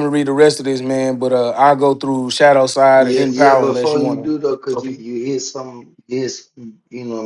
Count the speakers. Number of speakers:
2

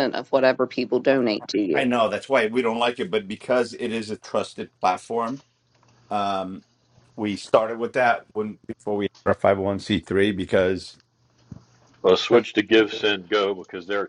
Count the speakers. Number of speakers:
3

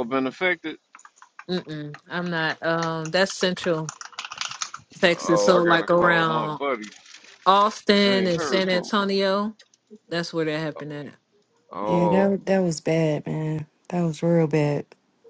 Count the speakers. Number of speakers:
3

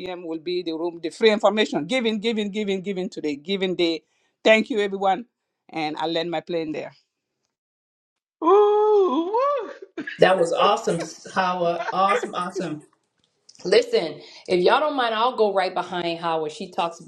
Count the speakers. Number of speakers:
3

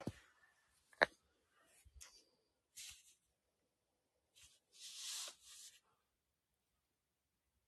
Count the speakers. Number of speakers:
0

